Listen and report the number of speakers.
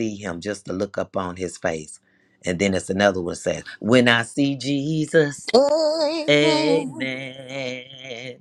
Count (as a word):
two